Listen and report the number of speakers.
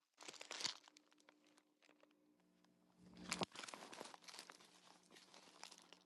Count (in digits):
0